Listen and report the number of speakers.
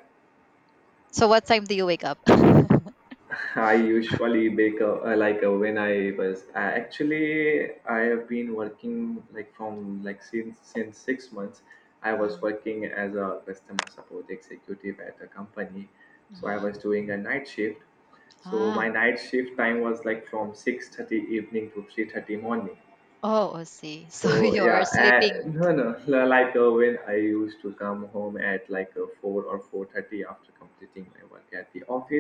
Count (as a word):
two